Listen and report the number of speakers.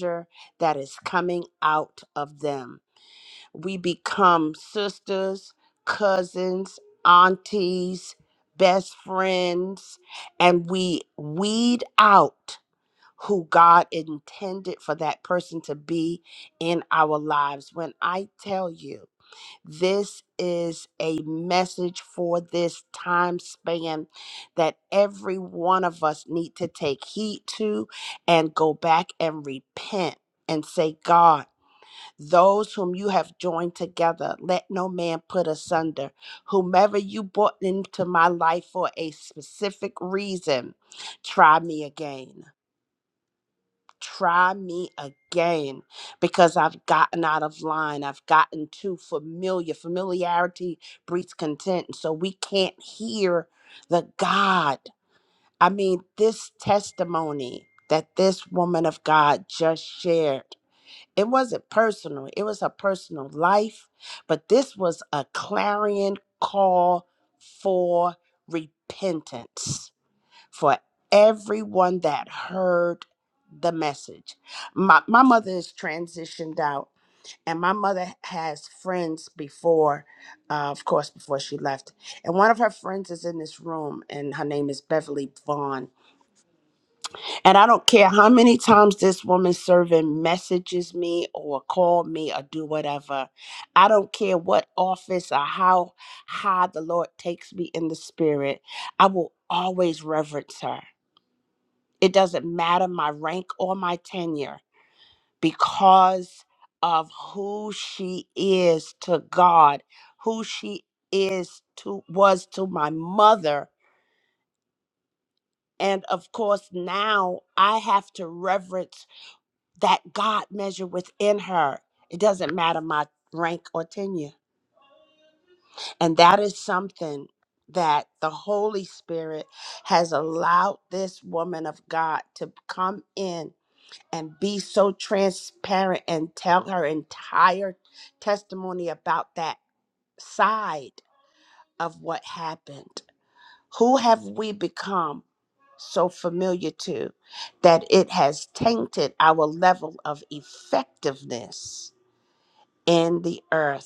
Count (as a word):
one